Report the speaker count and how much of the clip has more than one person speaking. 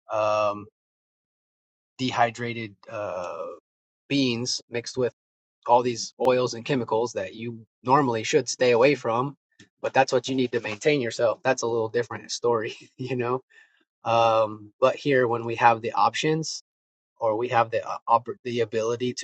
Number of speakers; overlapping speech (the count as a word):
one, no overlap